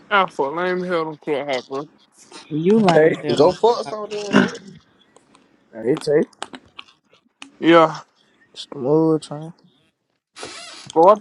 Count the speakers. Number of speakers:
four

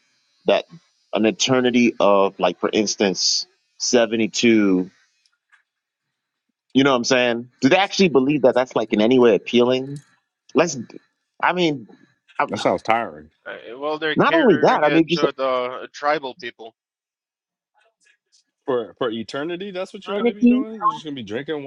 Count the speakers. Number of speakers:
three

